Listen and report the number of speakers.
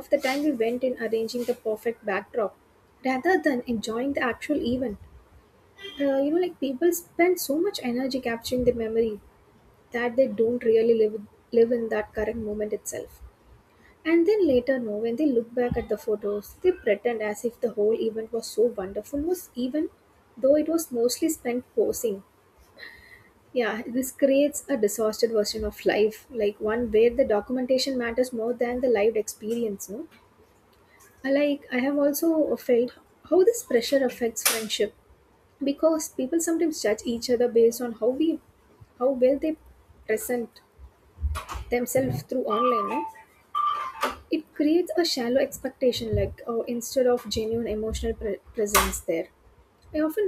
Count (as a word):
one